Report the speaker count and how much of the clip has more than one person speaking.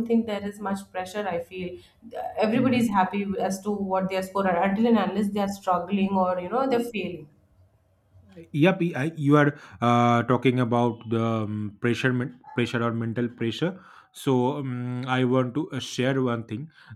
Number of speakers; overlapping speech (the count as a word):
two, about 1%